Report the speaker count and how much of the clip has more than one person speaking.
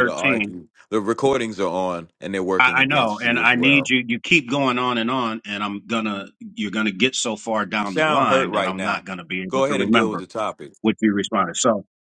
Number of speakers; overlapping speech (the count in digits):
2, about 31%